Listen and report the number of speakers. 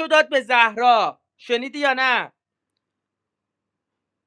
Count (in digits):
1